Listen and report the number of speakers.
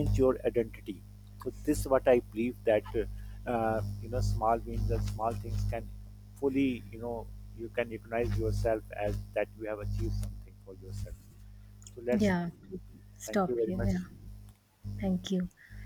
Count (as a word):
two